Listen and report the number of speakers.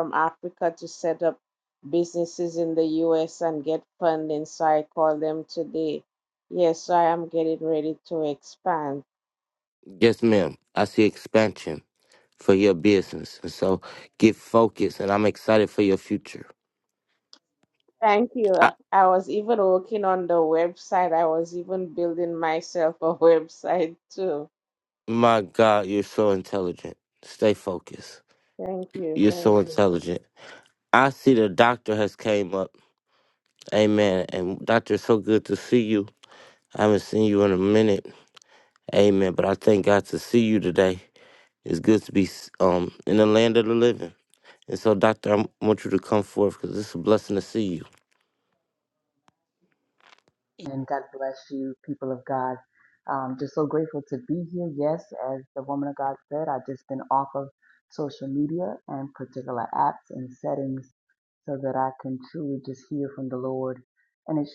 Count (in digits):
3